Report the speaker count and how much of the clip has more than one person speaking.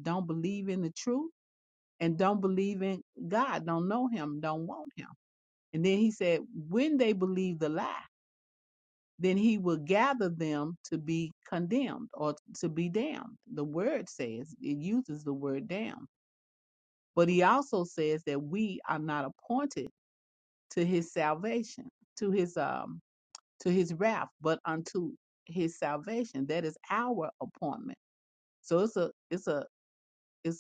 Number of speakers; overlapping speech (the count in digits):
1, no overlap